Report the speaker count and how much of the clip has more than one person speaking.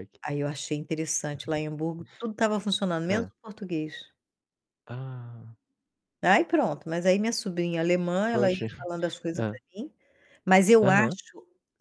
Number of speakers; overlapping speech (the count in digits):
2, about 9%